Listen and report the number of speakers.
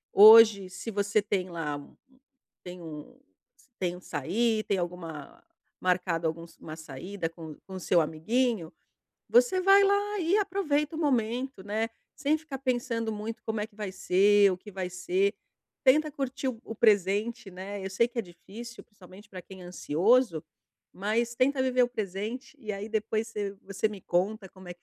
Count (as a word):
one